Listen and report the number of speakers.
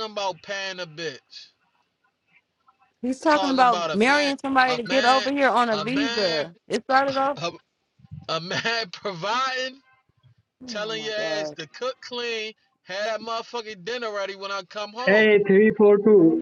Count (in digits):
3